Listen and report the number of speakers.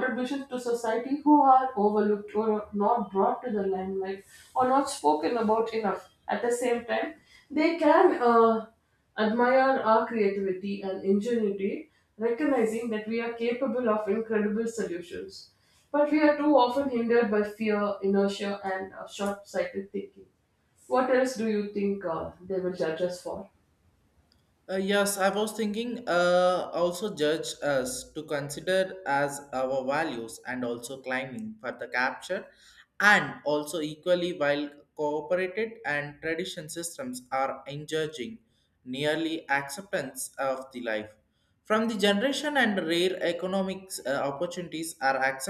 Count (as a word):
two